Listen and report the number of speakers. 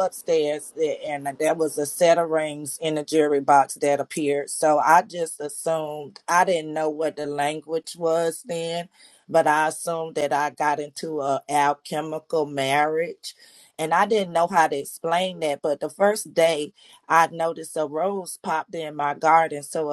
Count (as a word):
one